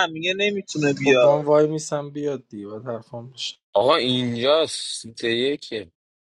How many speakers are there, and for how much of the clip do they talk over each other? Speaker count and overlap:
3, about 6%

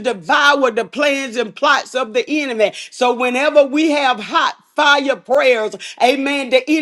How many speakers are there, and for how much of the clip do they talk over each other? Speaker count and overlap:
1, no overlap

